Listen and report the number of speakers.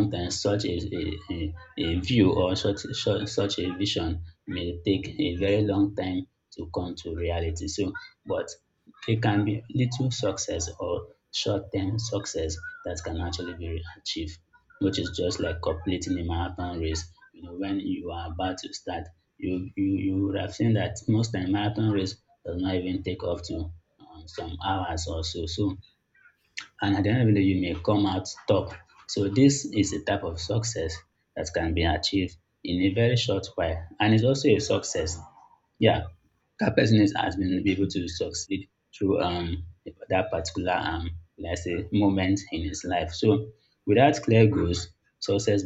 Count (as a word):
one